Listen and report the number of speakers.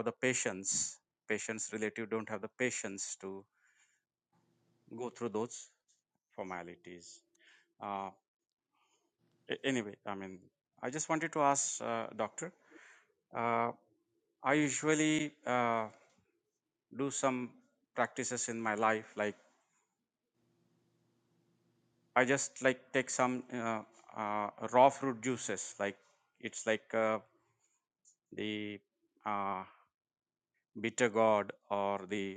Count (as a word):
one